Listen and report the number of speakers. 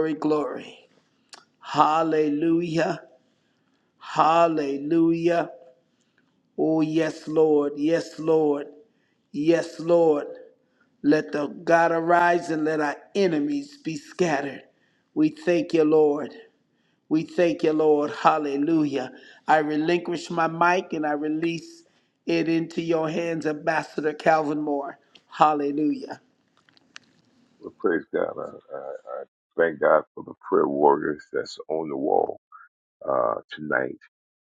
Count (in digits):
2